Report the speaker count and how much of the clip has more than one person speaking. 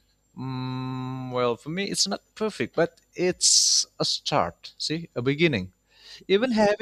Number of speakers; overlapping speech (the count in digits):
1, no overlap